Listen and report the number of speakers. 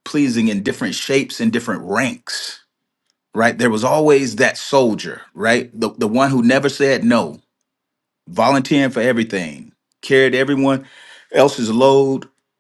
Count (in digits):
1